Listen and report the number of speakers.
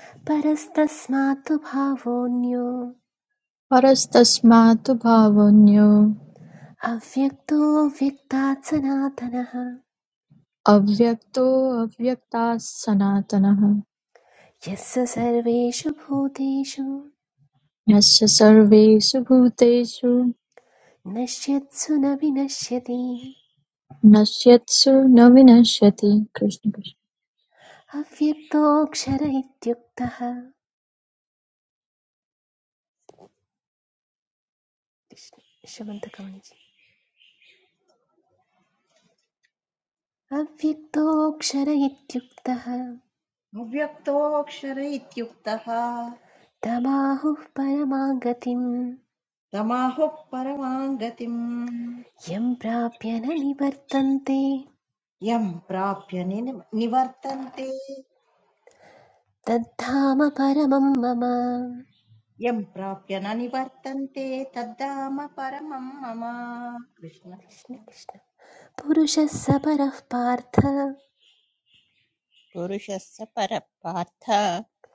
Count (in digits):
4